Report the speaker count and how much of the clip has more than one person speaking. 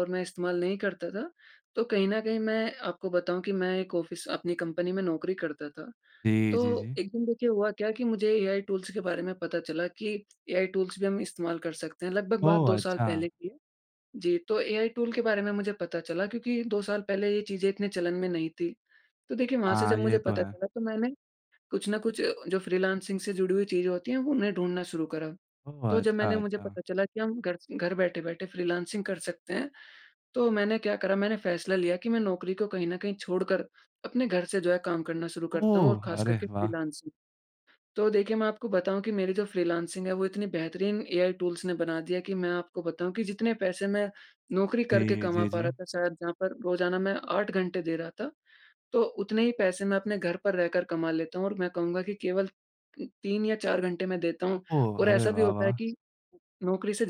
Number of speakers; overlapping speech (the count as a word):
two, about 10%